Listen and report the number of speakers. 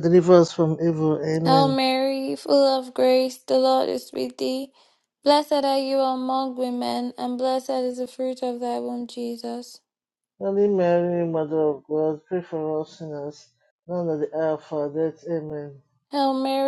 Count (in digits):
2